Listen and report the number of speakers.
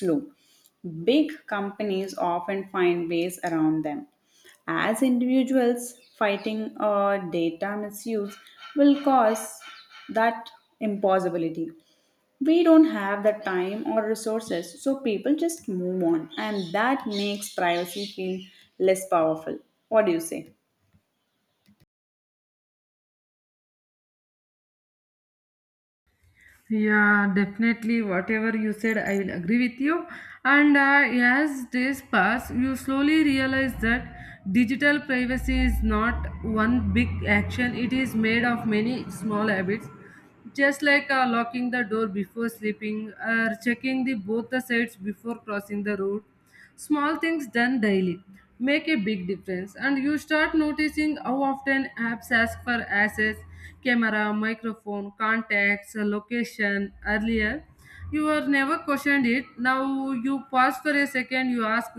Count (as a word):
two